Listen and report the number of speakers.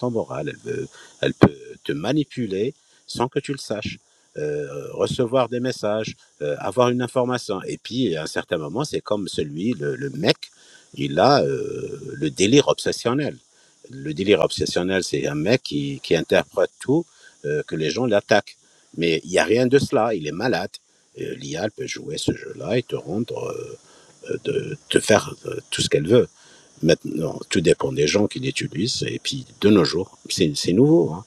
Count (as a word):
one